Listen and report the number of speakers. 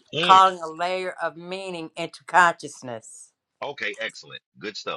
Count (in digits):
2